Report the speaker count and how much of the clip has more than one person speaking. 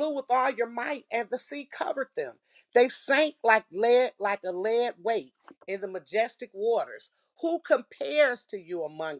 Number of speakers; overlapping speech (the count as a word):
one, no overlap